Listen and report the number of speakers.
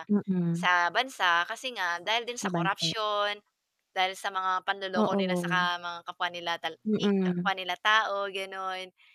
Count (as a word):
two